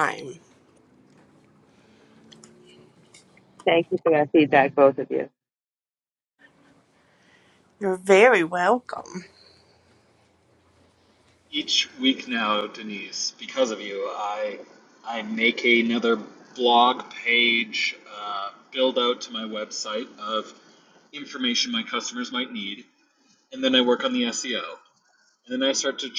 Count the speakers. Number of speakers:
3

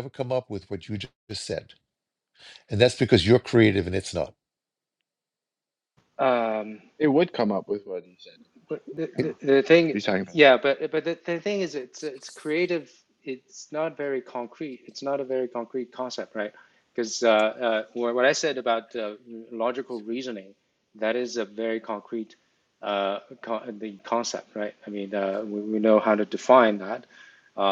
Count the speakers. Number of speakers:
3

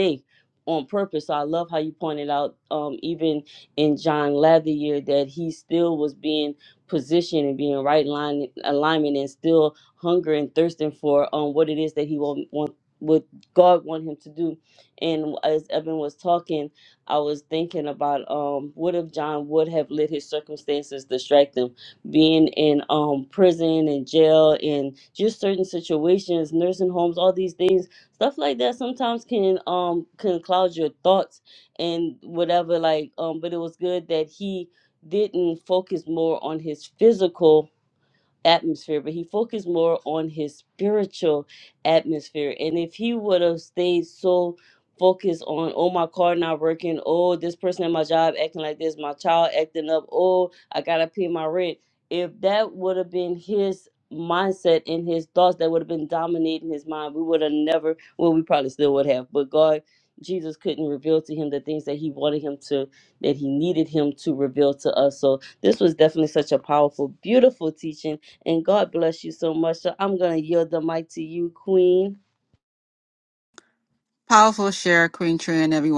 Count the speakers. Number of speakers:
2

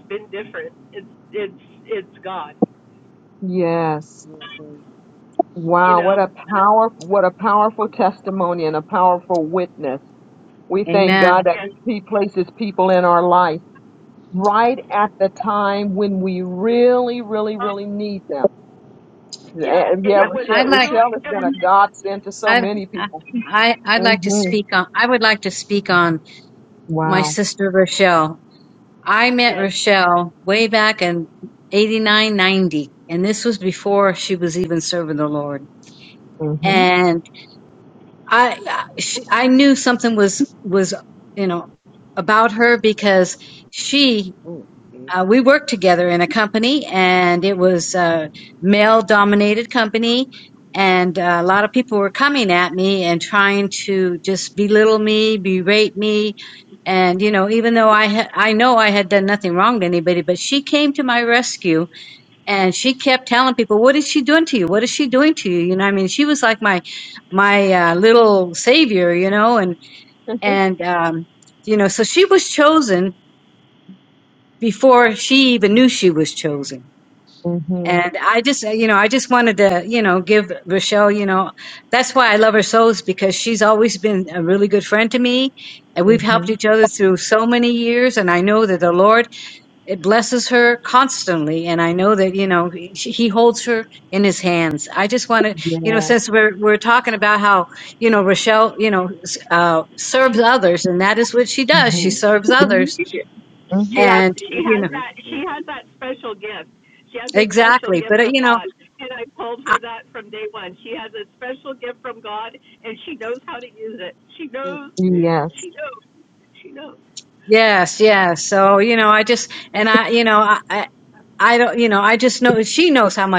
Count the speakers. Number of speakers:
4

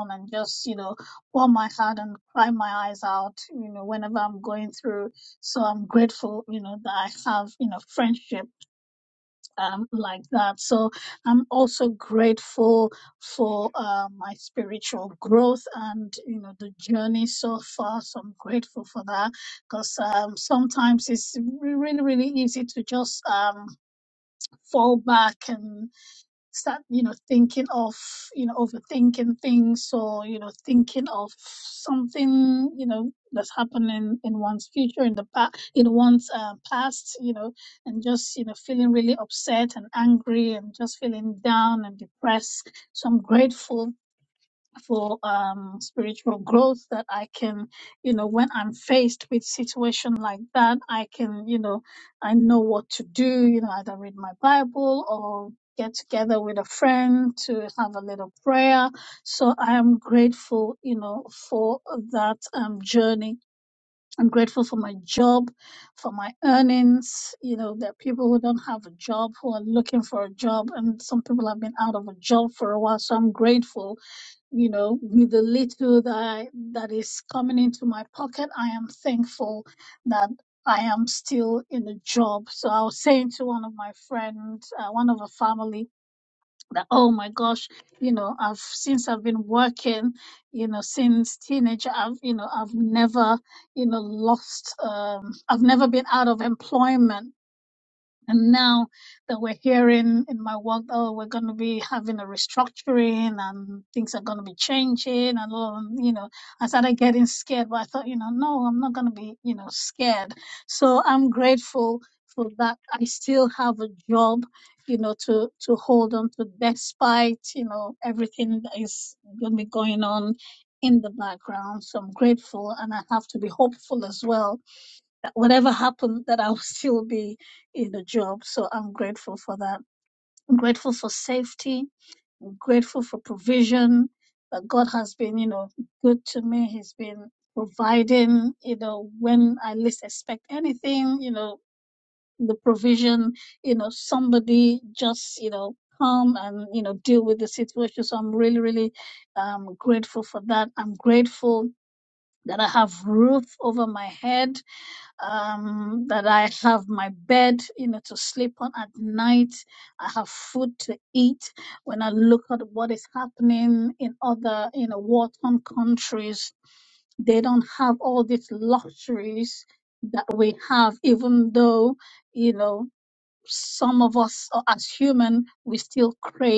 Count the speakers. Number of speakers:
1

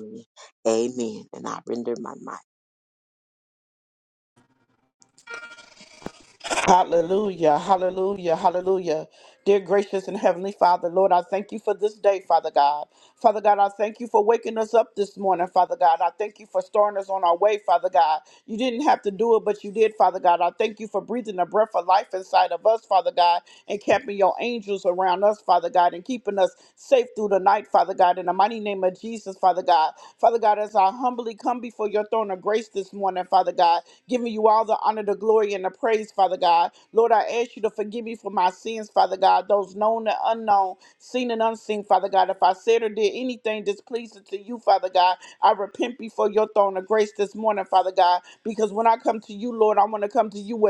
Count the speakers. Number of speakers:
2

